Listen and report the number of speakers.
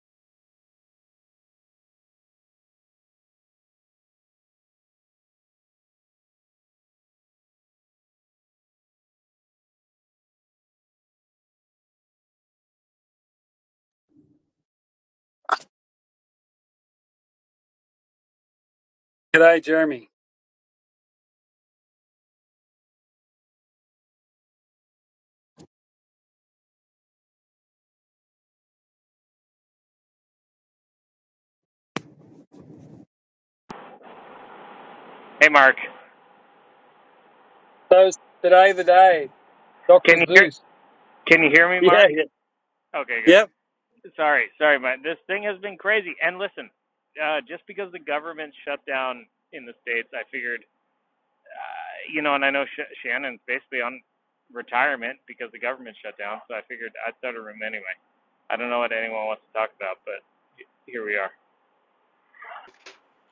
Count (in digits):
2